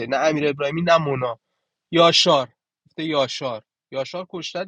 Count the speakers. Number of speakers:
1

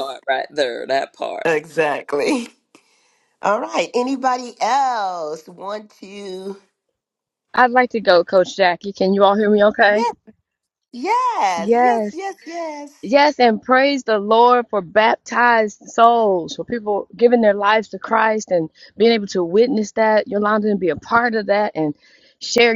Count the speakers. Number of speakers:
3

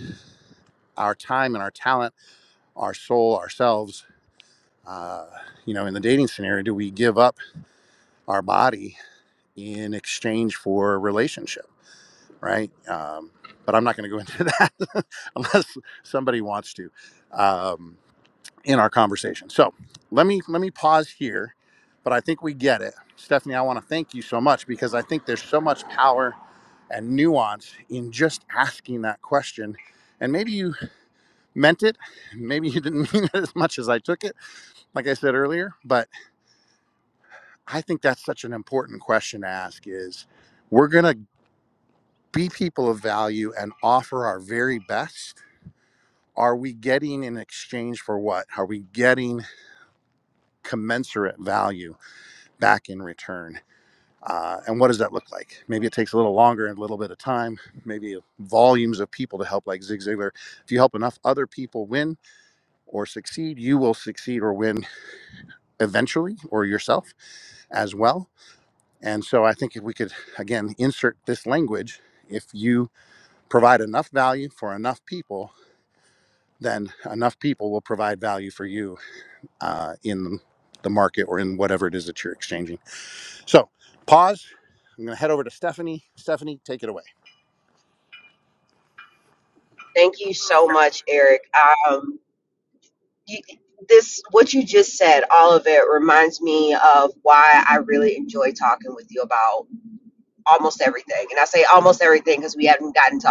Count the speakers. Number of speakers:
2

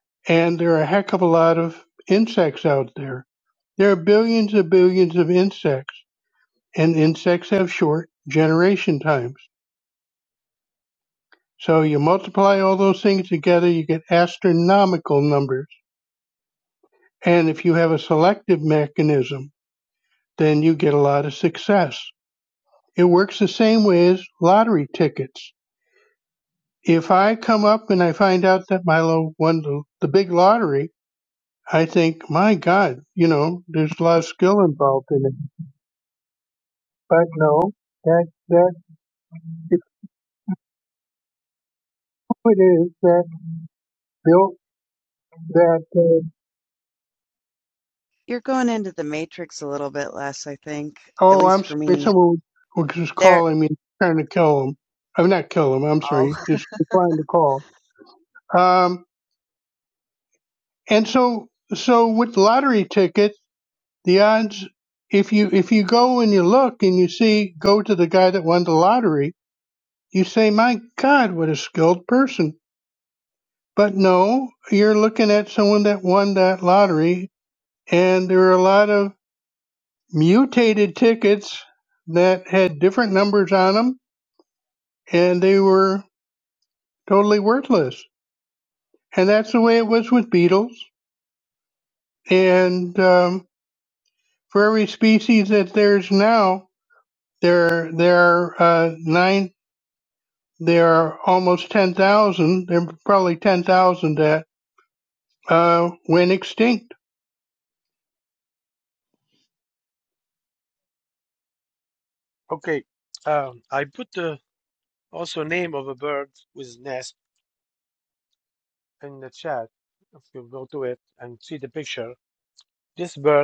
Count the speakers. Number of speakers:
3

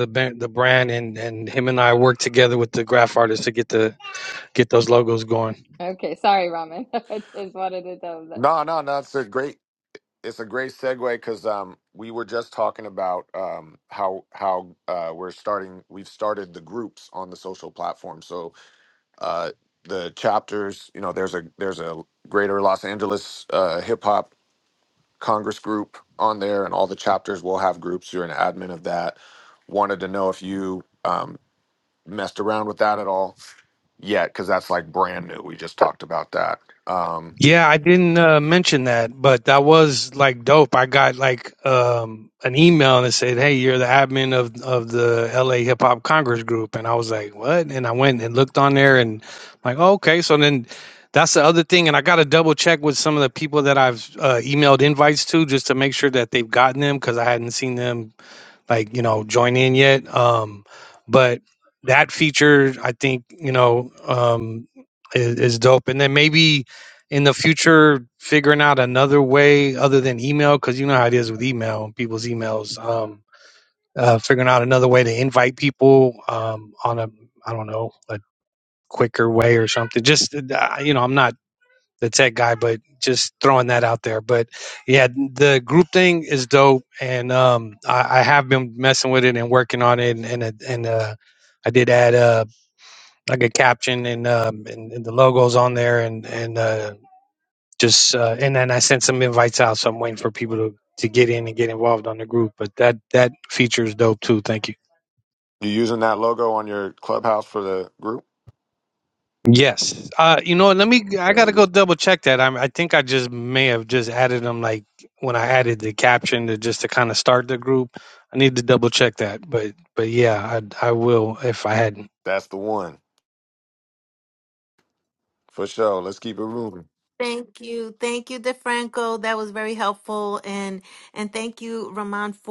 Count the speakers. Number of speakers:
4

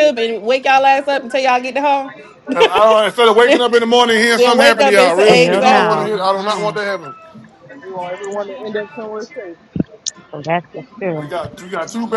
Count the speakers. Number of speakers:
4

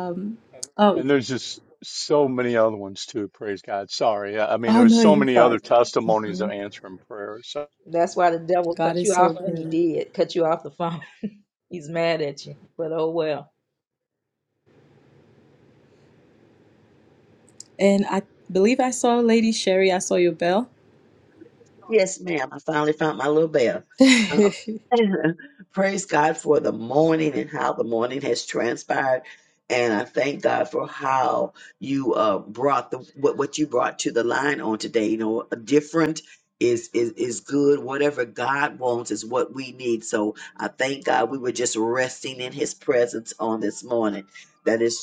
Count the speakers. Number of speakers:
4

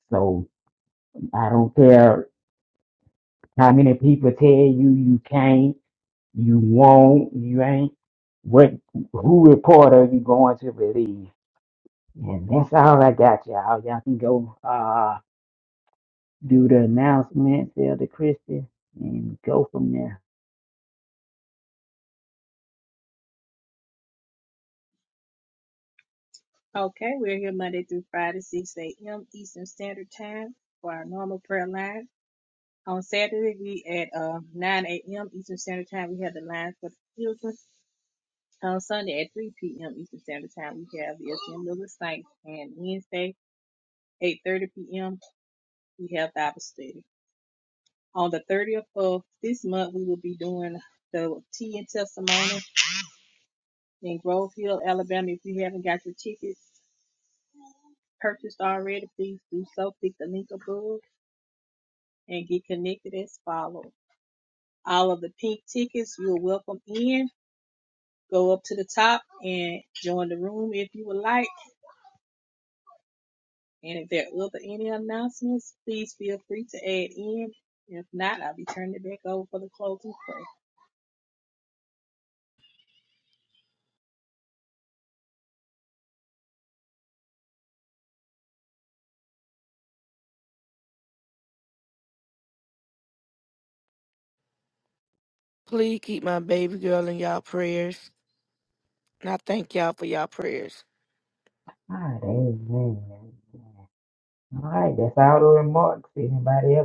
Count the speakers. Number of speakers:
3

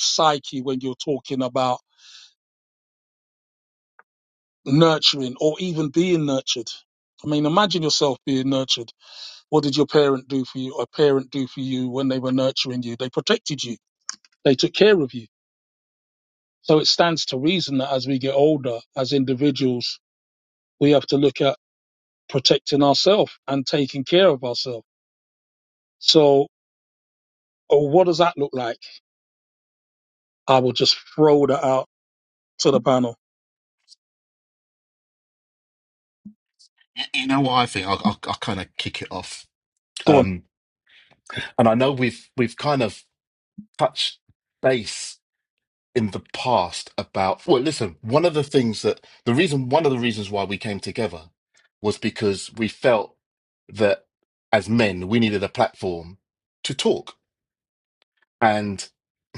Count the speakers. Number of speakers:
2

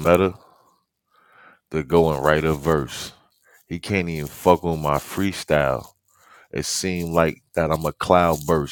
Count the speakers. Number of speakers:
1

